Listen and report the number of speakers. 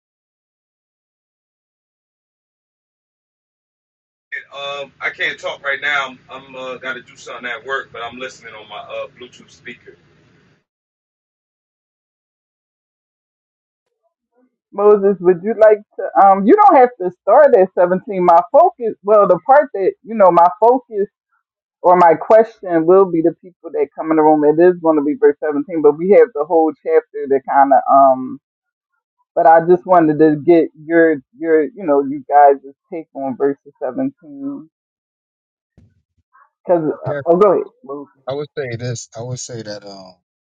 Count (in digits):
3